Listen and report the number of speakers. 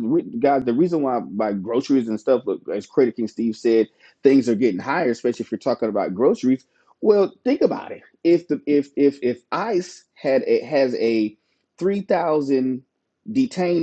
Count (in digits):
1